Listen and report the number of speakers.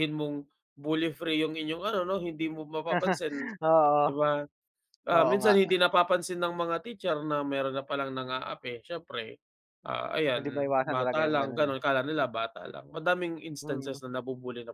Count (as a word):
two